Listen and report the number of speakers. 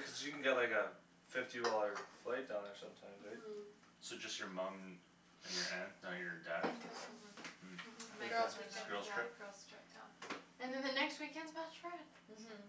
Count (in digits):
4